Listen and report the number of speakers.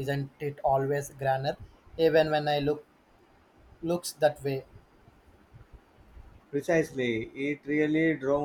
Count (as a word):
two